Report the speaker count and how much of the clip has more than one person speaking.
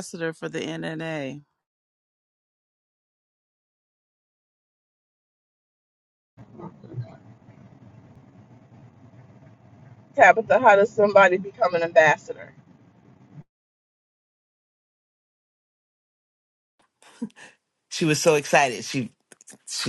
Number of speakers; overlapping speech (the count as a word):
three, no overlap